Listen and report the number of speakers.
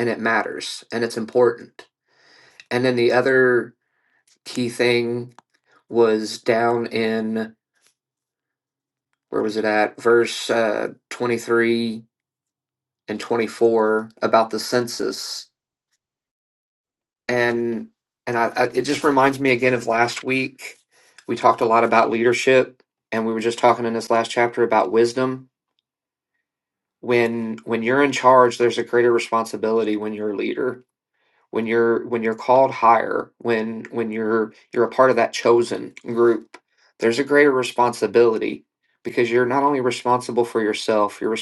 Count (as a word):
one